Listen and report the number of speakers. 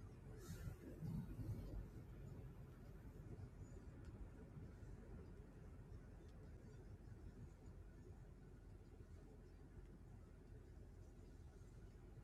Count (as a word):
zero